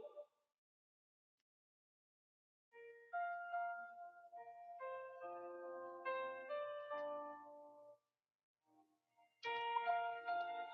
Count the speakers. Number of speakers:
0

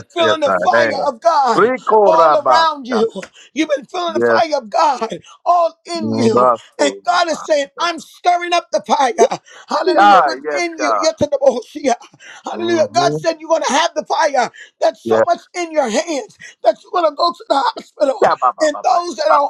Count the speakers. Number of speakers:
2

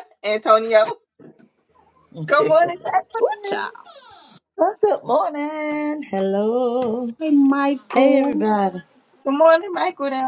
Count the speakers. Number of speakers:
3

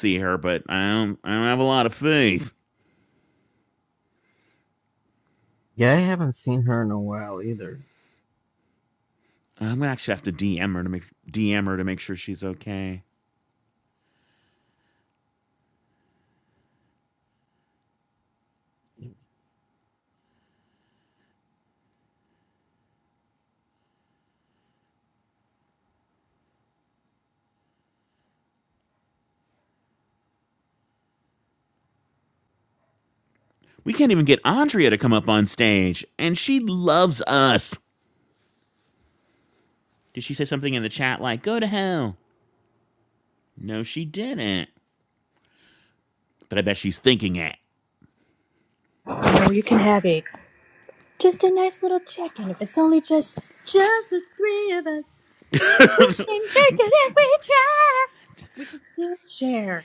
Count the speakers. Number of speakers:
3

